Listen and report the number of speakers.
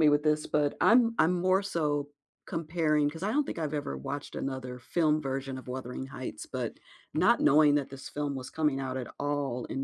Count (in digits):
1